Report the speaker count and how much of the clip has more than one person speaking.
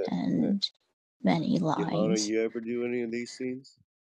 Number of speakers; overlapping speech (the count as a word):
two, about 26%